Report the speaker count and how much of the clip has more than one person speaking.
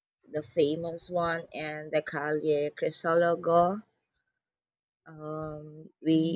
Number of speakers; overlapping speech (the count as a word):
one, no overlap